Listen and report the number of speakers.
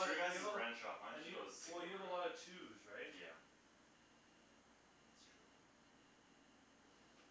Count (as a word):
two